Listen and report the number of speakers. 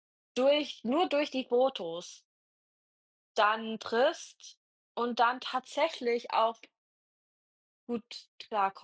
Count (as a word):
one